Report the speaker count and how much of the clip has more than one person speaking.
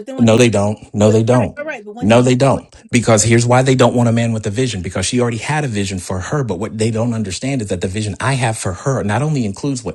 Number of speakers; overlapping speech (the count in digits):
2, about 13%